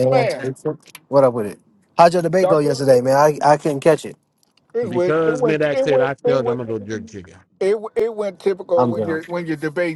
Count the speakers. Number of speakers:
three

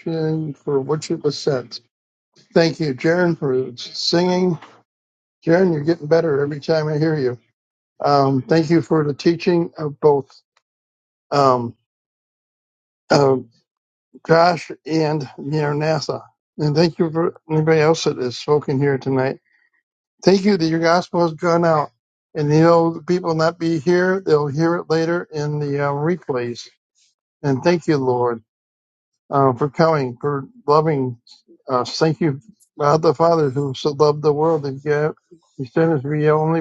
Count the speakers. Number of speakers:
one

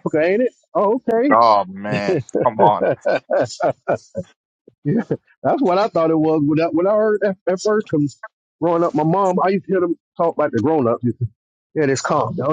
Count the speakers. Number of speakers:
two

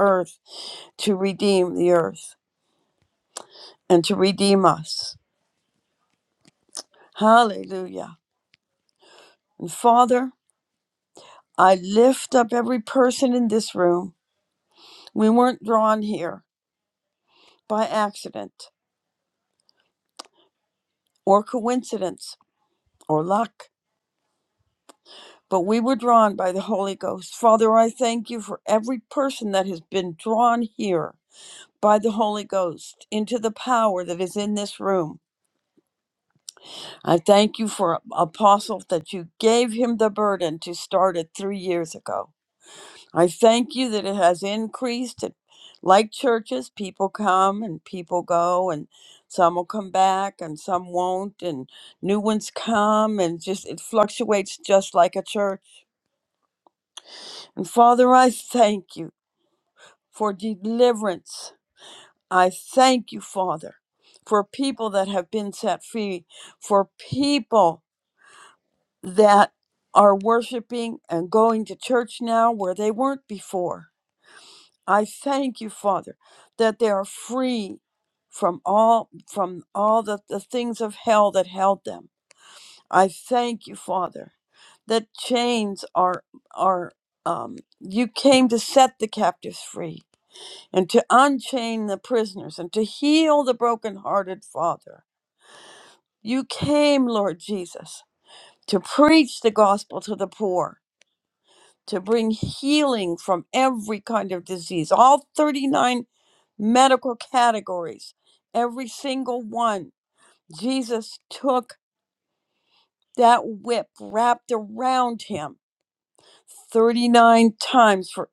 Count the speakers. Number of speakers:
one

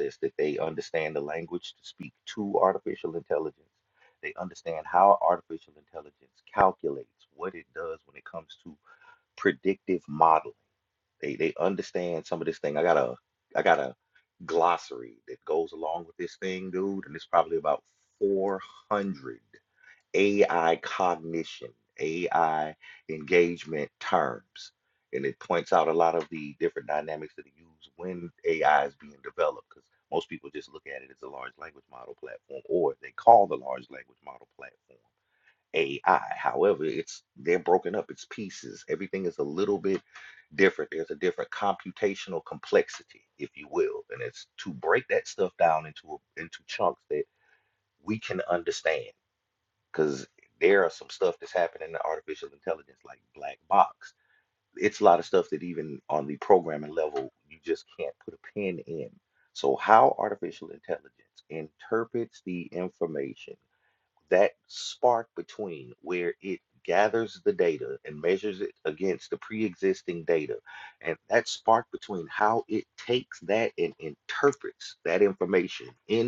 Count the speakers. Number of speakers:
one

